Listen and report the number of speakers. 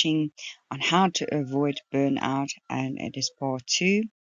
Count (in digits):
1